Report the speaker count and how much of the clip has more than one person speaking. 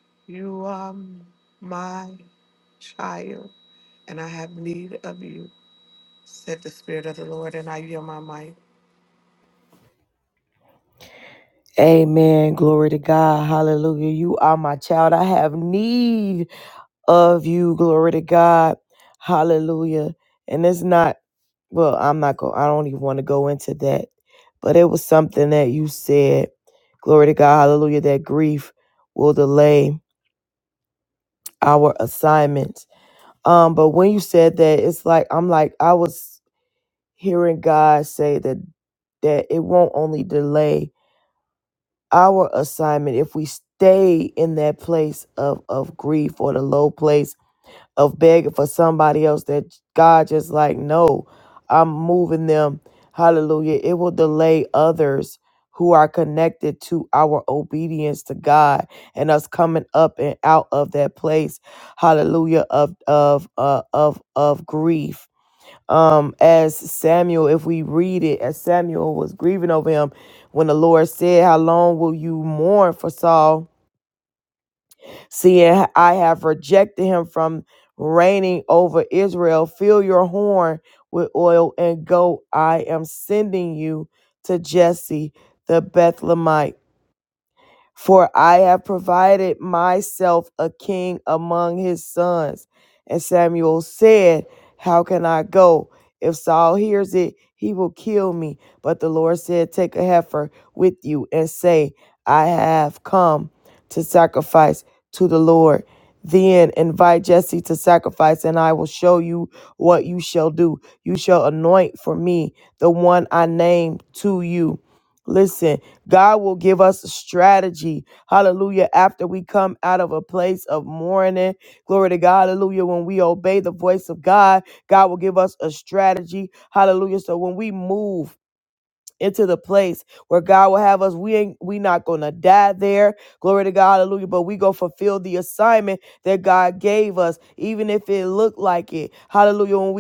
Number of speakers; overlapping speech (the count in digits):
2, no overlap